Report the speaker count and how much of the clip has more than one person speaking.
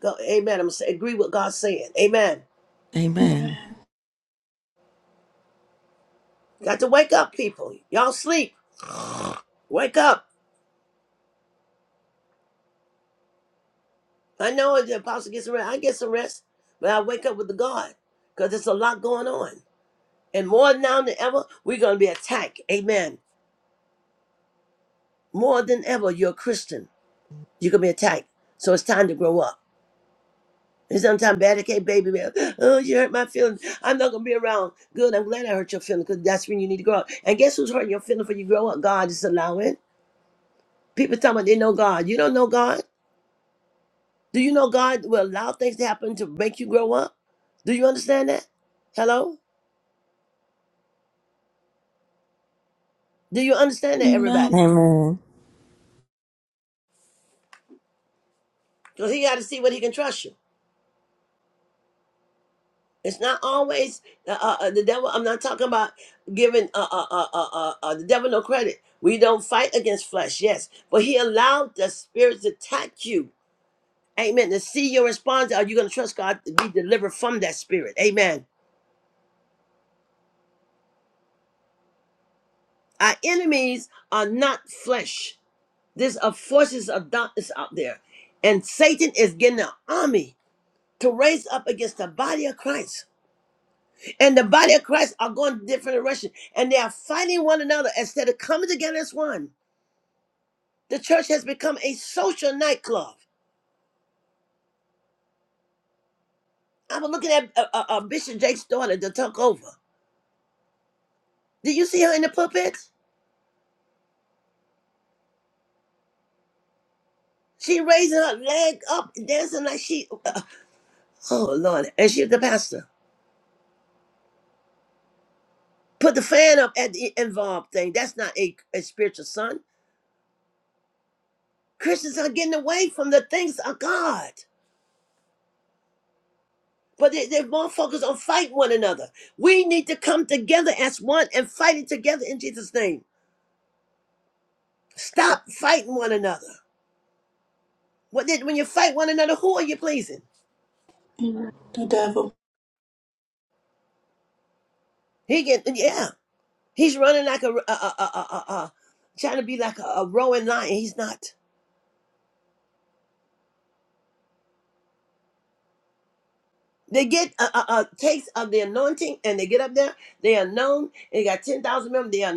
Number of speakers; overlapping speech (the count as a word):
three, under 1%